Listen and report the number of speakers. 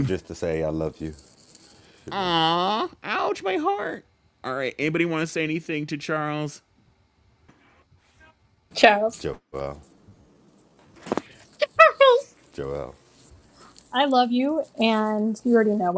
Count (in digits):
3